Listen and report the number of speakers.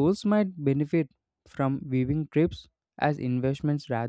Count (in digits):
1